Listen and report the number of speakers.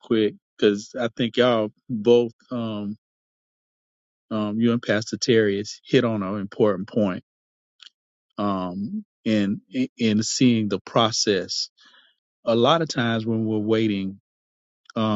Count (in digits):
1